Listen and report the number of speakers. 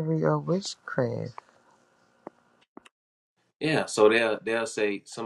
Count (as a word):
two